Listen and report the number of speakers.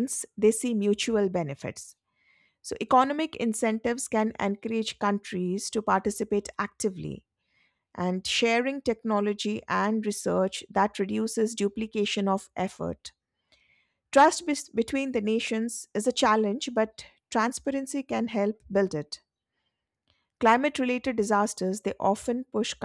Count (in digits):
1